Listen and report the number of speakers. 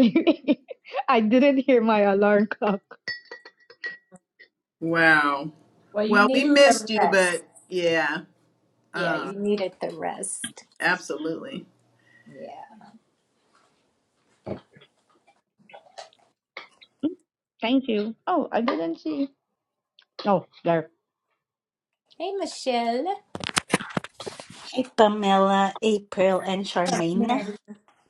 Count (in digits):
4